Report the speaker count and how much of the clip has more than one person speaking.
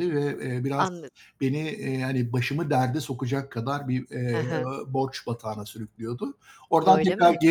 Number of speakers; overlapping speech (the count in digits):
2, about 10%